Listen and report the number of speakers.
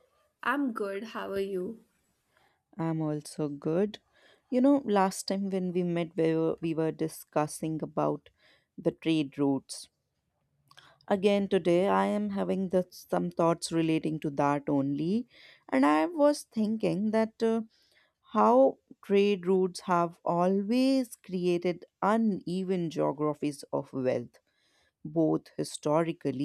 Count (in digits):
2